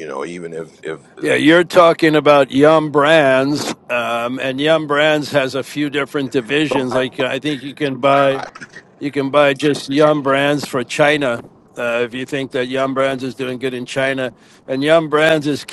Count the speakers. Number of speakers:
two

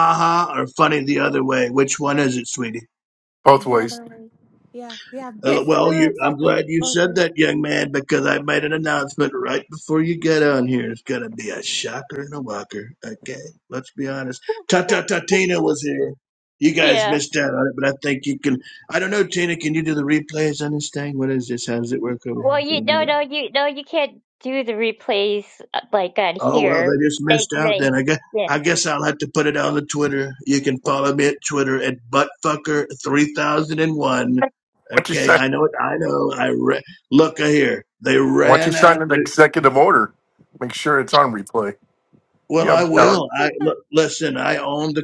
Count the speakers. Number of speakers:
four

